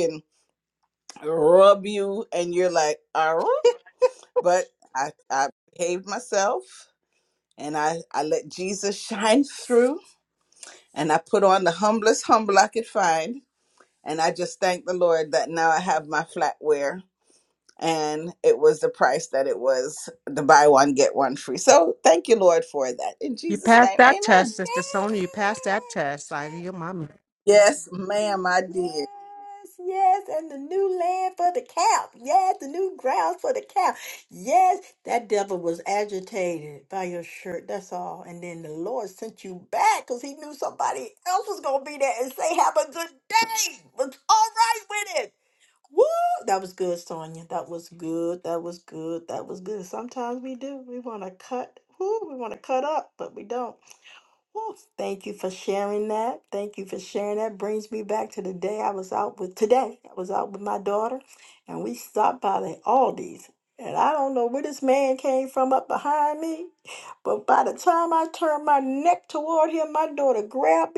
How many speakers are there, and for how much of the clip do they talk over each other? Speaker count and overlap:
three, about 2%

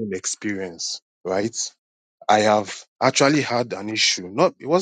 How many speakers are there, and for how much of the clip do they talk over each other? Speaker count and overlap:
one, no overlap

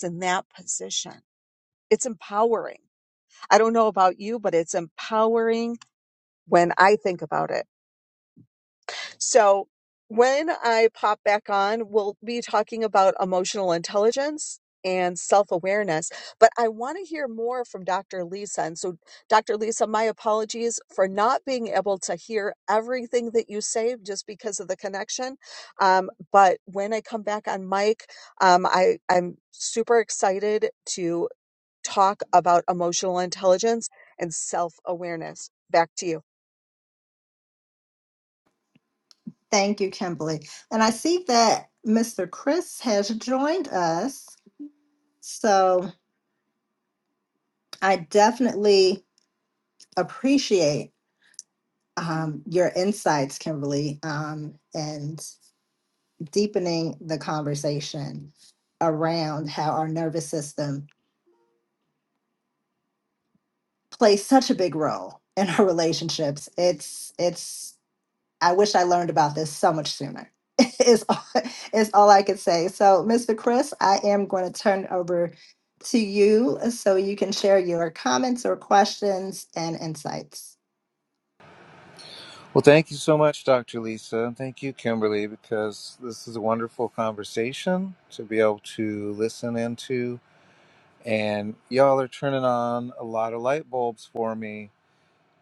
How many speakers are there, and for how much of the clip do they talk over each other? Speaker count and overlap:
three, no overlap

